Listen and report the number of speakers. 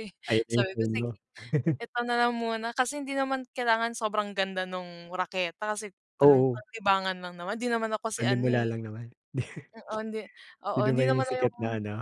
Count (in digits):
2